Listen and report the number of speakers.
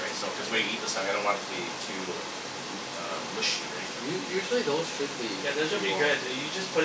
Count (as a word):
three